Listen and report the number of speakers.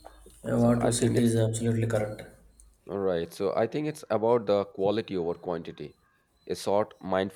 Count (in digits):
2